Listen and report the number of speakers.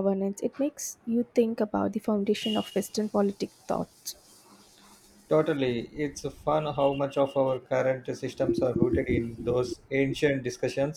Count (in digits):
2